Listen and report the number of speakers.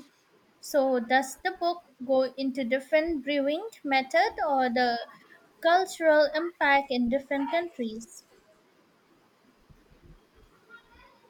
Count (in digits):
1